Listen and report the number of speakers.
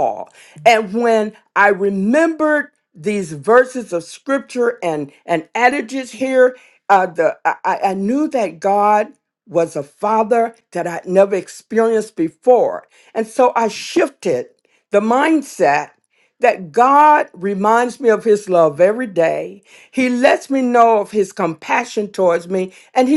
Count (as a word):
one